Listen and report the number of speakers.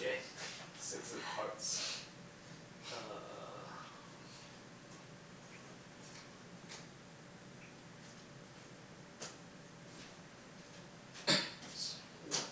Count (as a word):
one